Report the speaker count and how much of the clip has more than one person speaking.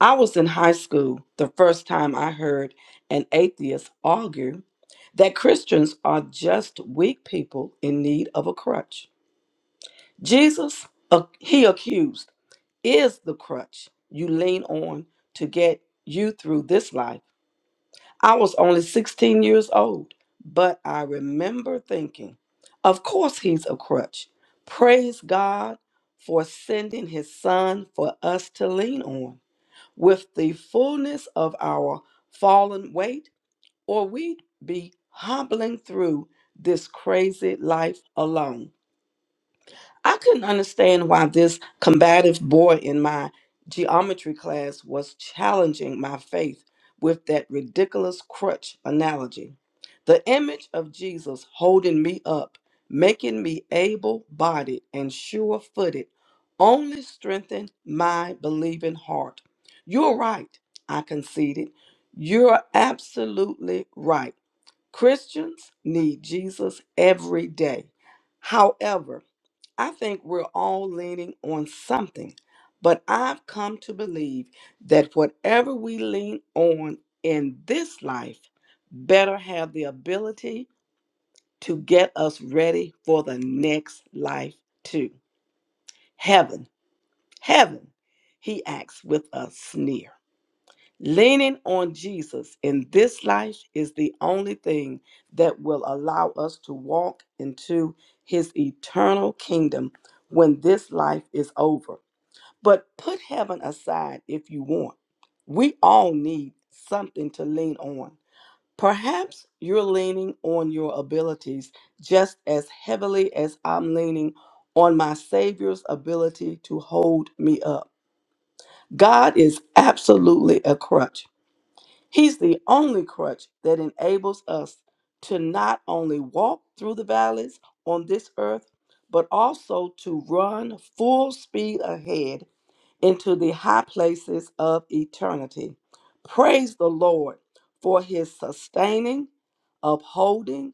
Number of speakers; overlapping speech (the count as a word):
one, no overlap